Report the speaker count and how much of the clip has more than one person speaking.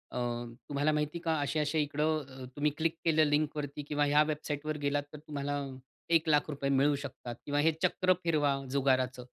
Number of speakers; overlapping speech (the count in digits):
1, no overlap